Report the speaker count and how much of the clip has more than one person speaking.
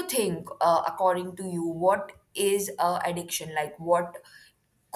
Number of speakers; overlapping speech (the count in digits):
1, no overlap